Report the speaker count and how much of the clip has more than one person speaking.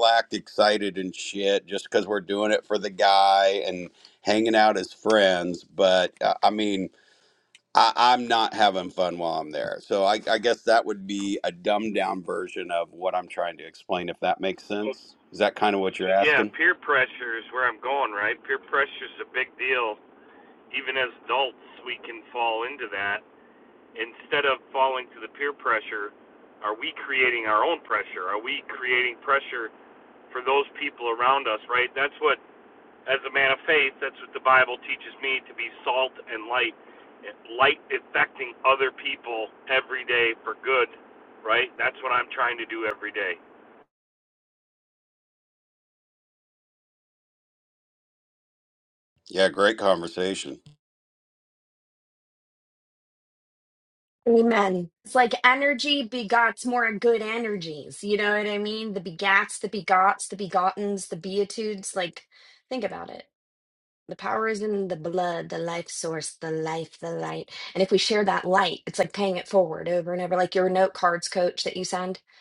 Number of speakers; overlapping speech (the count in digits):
3, about 1%